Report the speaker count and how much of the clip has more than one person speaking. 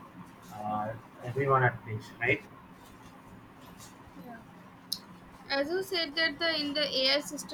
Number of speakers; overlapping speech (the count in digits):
2, no overlap